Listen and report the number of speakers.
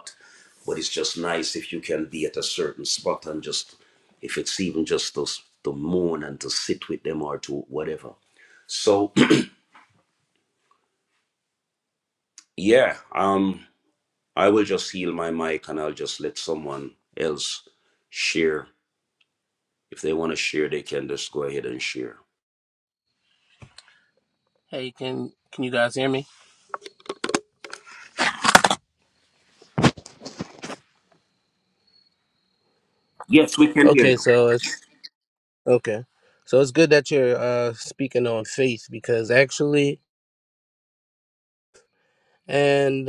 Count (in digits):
2